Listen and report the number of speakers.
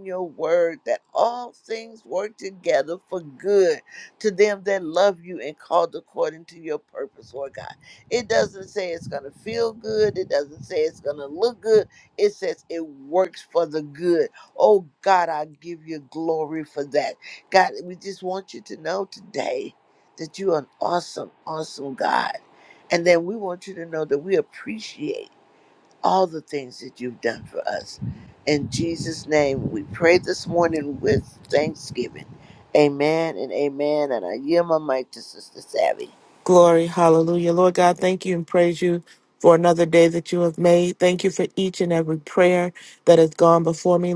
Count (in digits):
2